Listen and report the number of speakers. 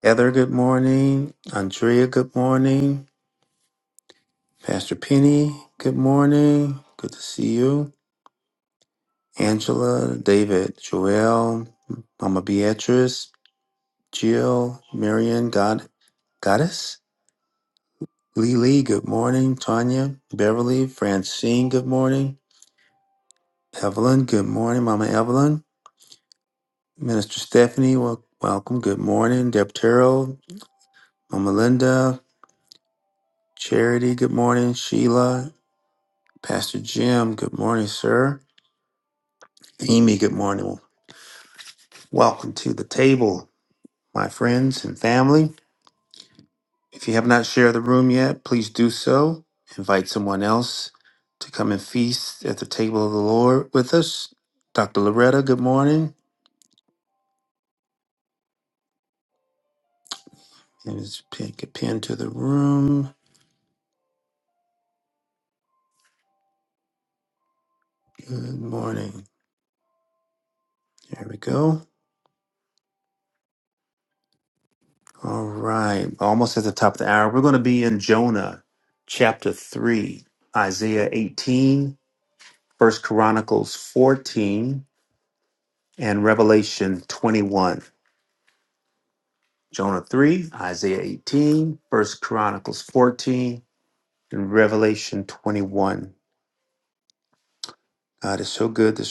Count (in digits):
1